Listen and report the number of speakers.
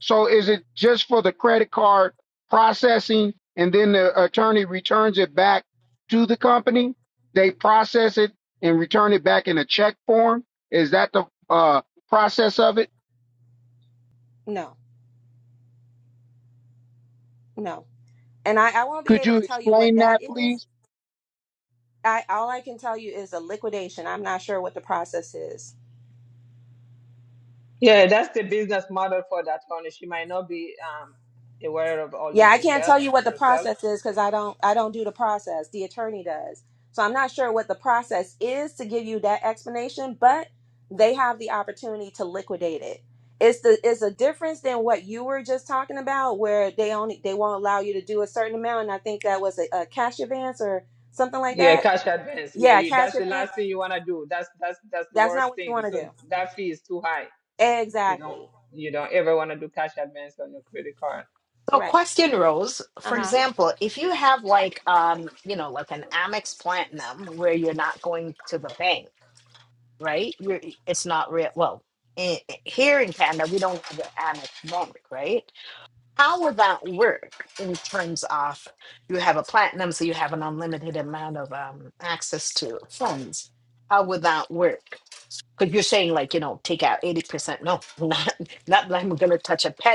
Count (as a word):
four